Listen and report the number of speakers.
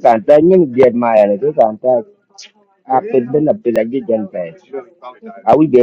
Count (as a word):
one